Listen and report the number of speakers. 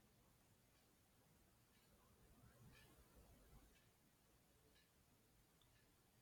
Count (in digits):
0